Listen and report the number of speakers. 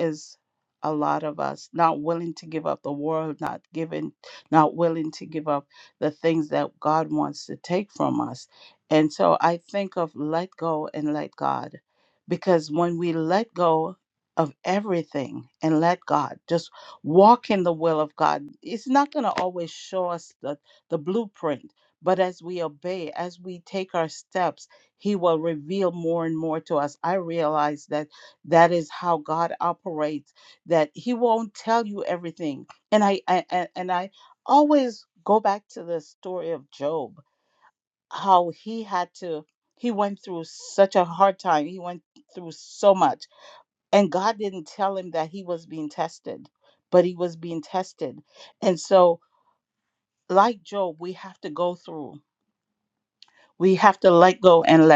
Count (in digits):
1